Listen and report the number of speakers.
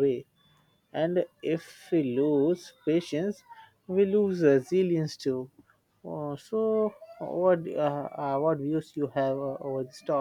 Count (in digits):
1